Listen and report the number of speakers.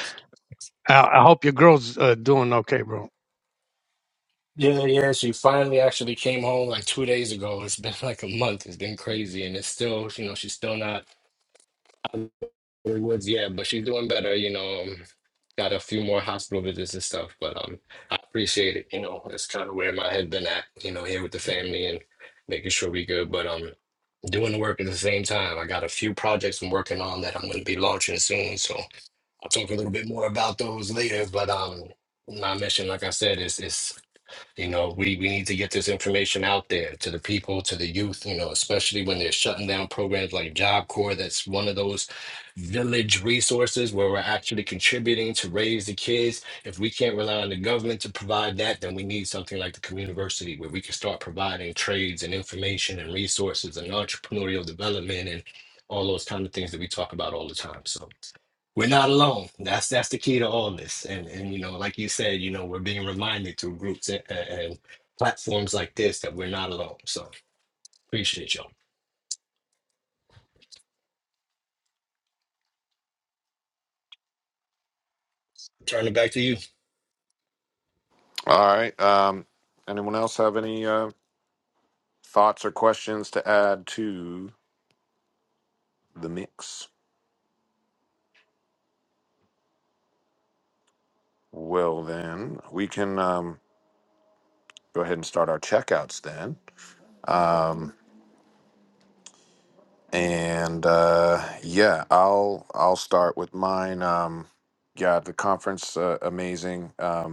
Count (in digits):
3